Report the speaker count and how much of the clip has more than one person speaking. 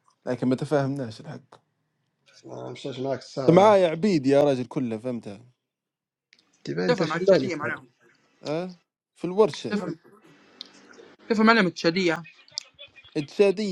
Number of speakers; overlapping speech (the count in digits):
3, about 12%